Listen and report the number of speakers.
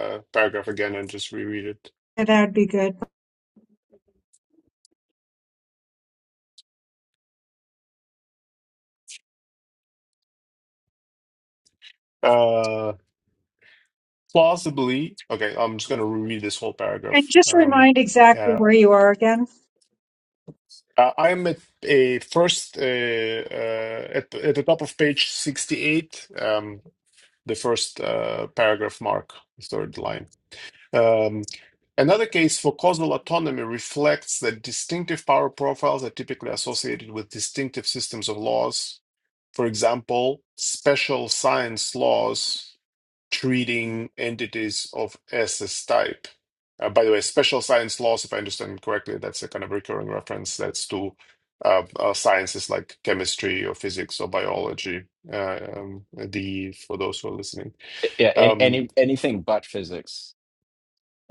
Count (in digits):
3